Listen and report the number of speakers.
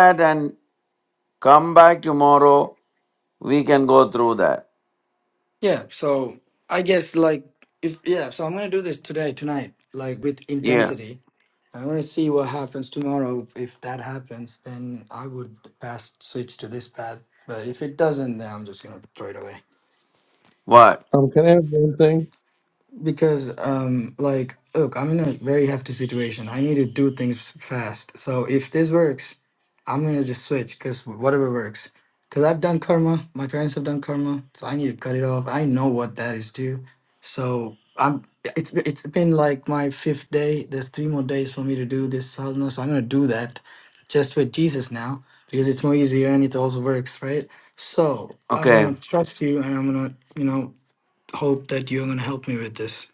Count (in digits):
3